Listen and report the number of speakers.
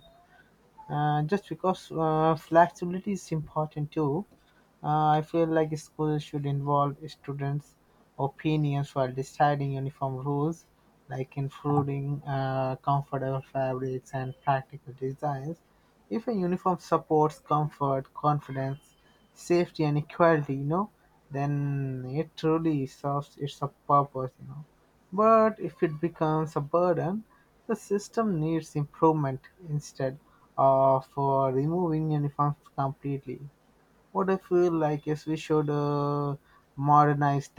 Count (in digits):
1